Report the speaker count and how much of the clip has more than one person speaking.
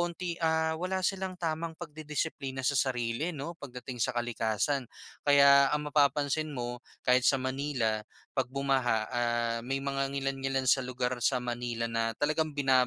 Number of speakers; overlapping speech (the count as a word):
one, no overlap